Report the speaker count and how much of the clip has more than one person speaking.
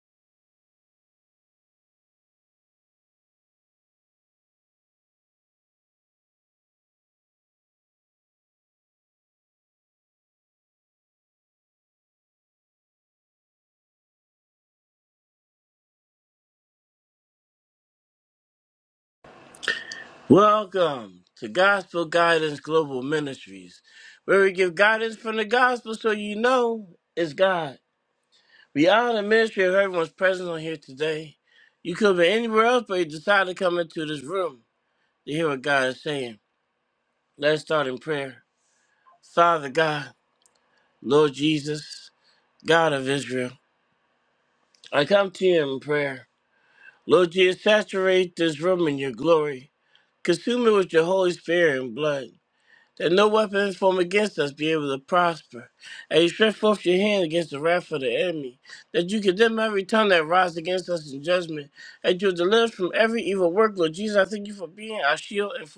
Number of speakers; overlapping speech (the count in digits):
1, no overlap